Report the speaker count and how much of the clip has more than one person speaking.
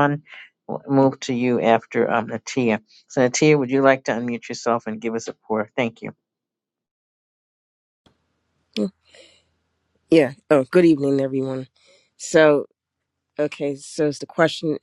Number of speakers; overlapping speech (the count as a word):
two, no overlap